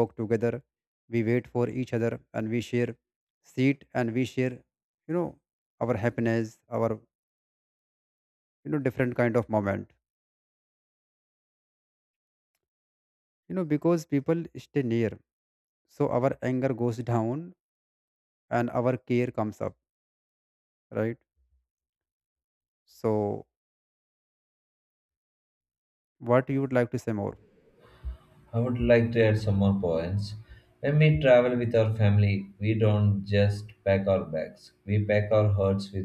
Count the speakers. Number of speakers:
2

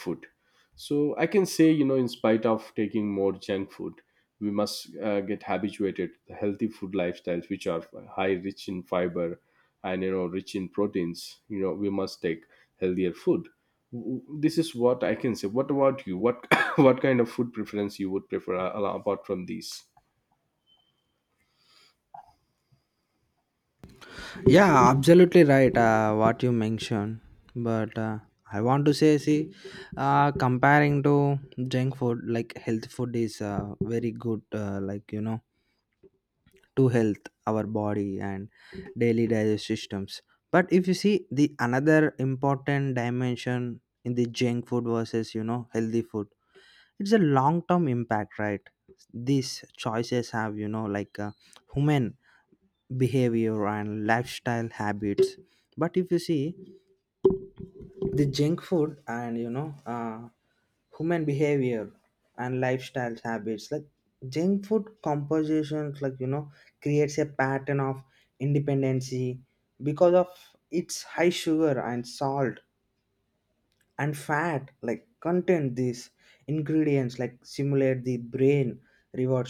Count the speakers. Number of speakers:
2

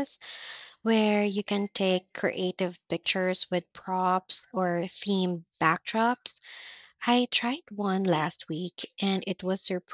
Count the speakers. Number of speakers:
1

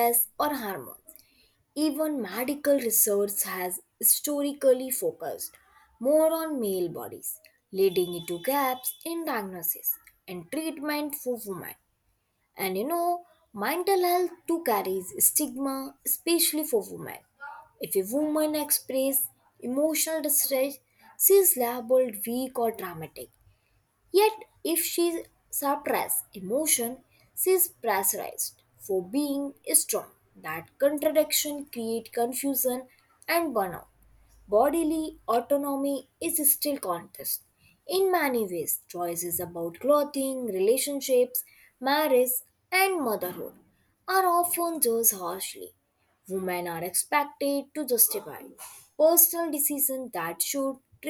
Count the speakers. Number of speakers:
1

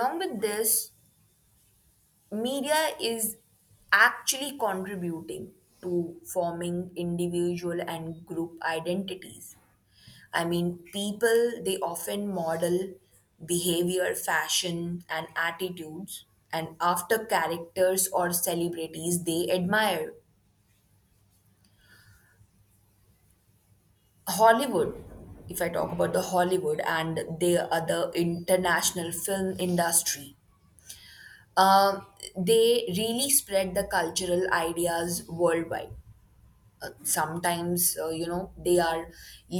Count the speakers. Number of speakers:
1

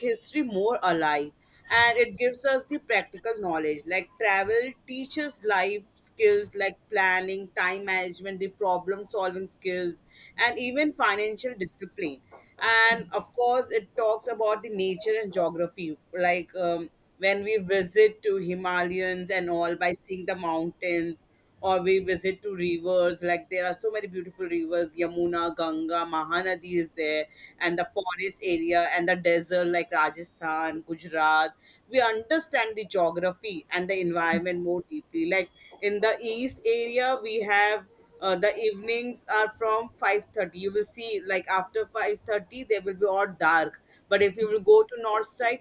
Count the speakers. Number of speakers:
1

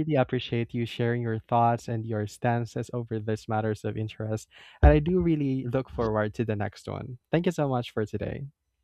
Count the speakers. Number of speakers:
1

